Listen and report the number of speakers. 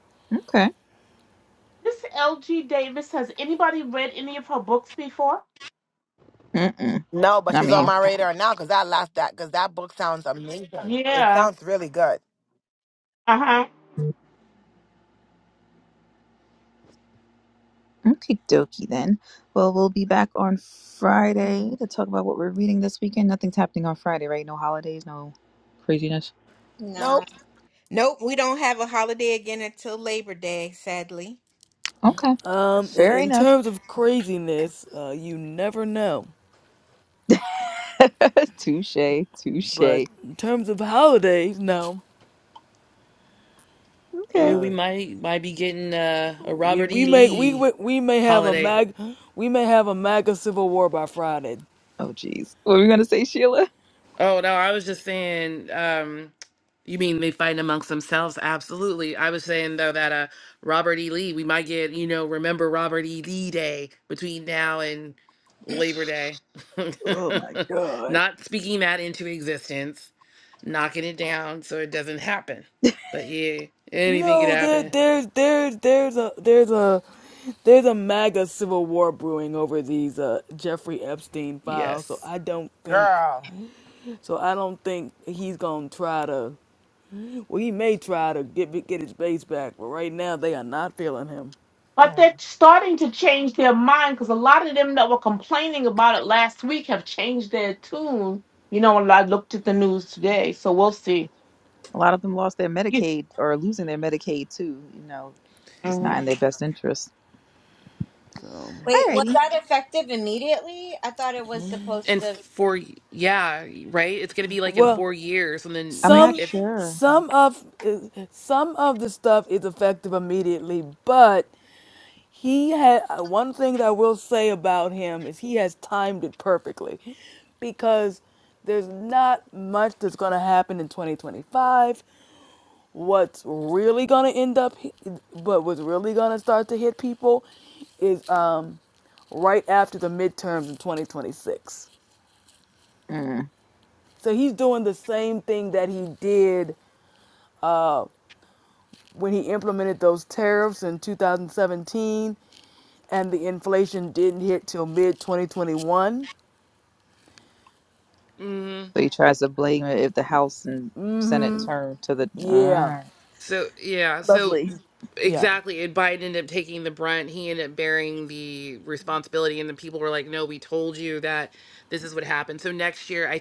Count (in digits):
7